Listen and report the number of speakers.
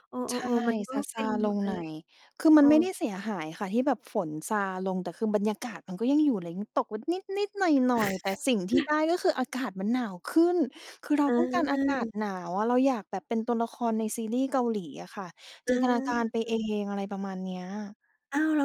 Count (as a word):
two